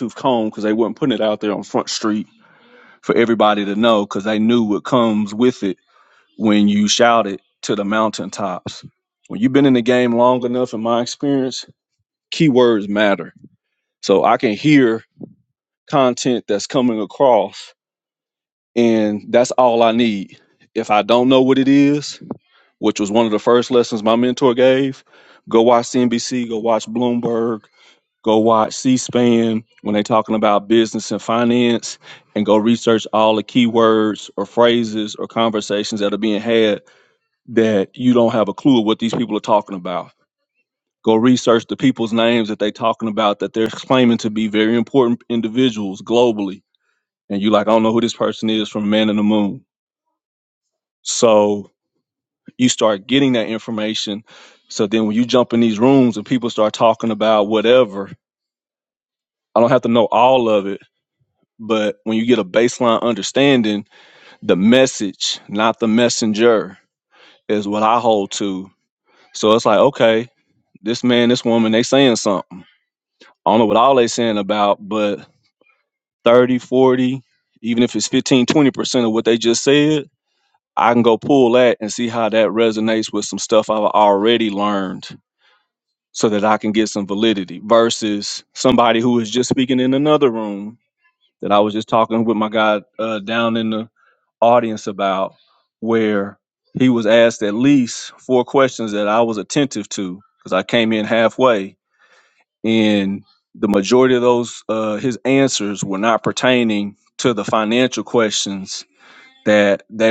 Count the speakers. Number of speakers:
1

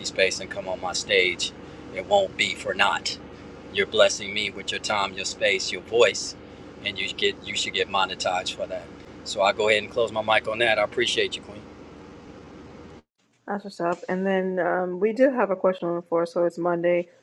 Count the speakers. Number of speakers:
2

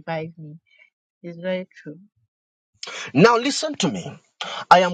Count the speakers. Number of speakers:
2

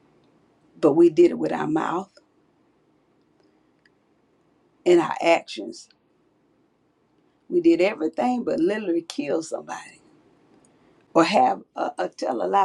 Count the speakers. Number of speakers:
1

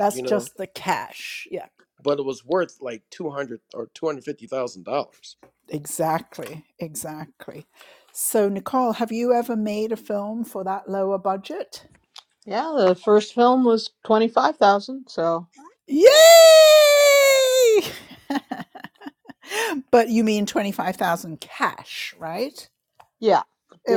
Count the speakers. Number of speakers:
3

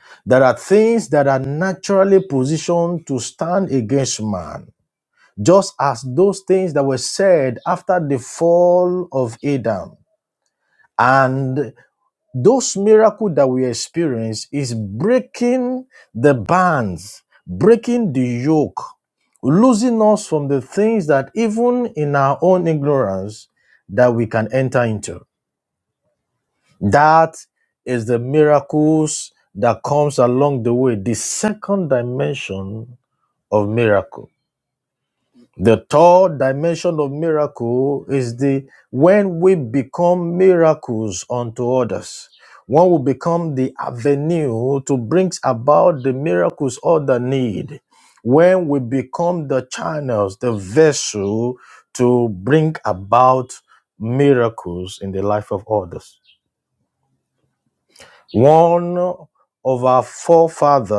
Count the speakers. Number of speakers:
1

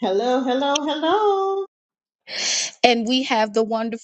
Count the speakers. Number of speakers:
2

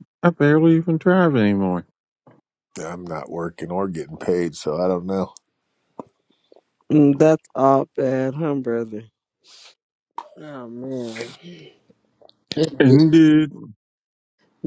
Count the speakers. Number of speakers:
3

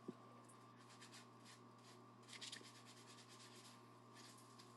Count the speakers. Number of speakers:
0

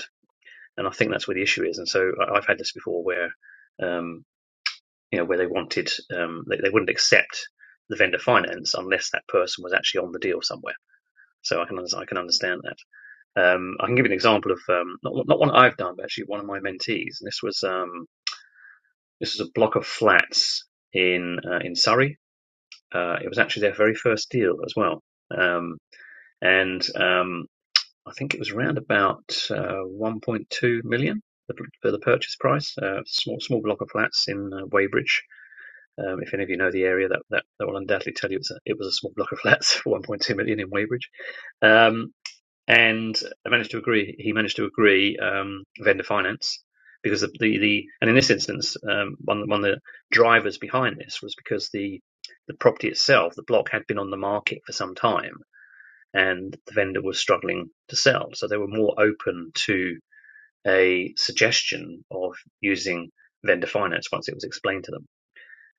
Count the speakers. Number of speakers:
1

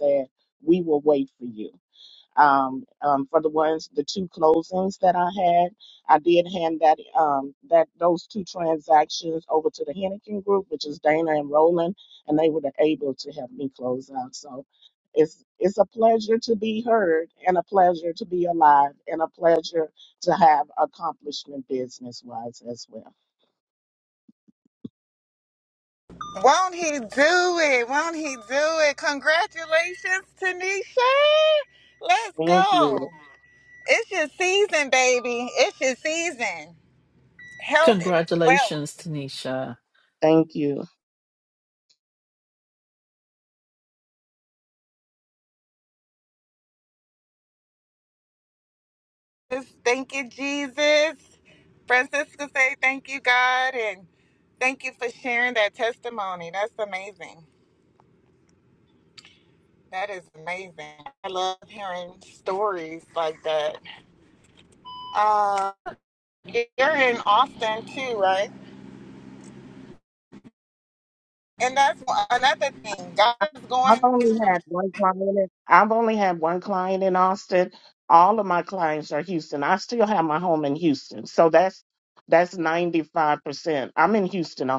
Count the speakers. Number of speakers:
3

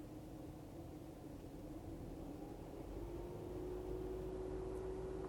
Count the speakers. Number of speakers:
0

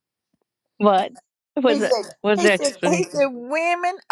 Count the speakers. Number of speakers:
2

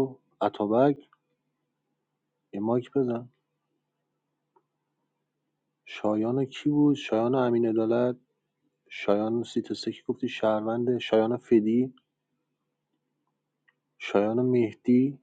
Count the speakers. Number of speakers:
1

